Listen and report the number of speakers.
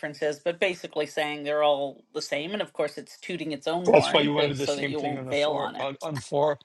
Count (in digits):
2